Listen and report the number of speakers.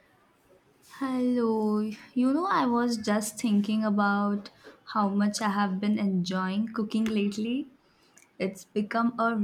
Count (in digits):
1